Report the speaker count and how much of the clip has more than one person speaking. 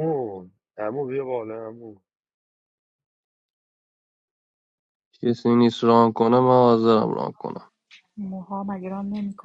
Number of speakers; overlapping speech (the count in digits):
3, no overlap